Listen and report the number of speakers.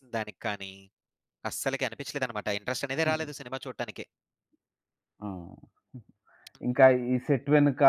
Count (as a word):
two